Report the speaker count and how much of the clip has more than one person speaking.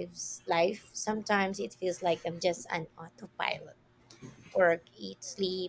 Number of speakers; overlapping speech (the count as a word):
one, no overlap